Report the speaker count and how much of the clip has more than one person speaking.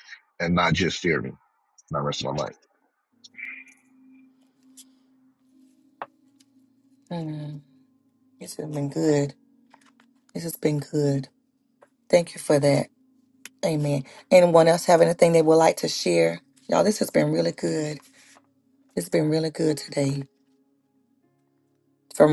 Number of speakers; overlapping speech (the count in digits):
2, no overlap